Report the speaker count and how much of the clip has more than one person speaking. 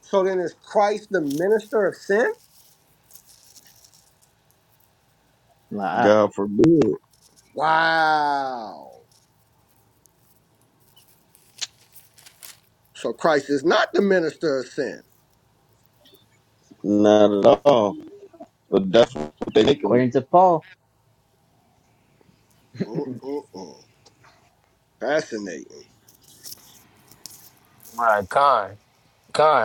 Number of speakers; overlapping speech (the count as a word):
four, about 1%